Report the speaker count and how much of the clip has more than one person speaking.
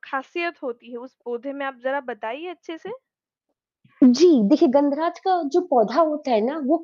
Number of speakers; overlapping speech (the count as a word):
two, no overlap